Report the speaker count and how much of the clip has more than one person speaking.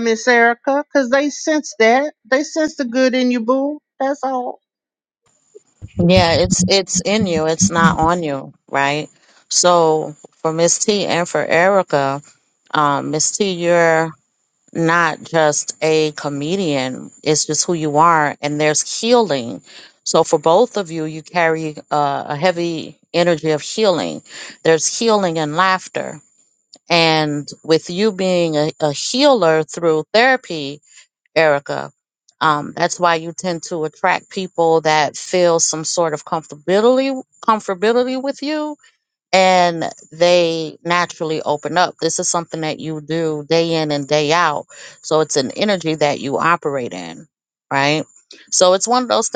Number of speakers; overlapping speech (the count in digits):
2, no overlap